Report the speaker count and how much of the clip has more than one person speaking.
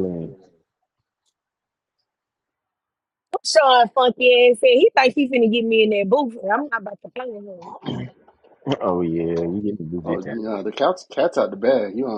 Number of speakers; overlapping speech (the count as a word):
three, about 3%